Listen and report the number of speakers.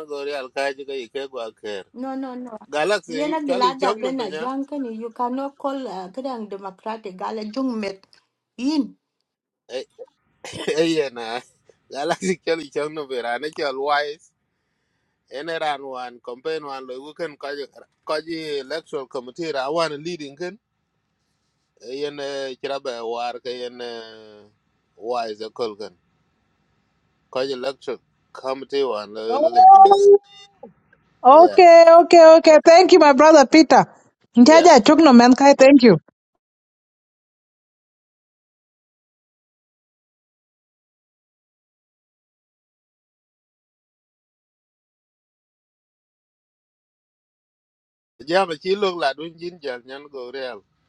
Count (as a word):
three